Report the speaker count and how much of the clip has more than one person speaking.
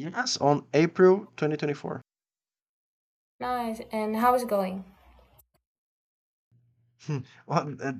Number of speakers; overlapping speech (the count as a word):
two, no overlap